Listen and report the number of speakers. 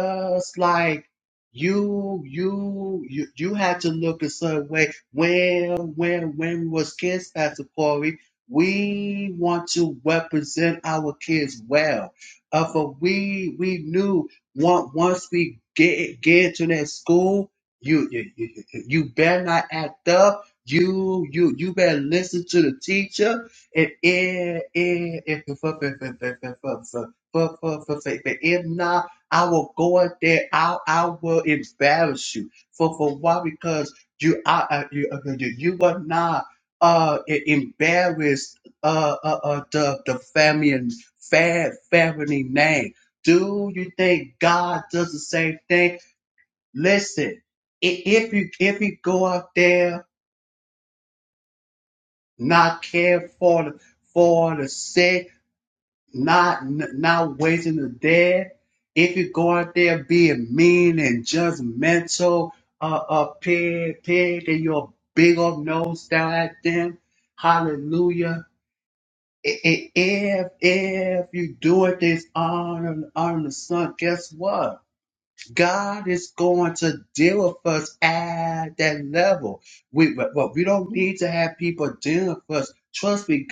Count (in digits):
1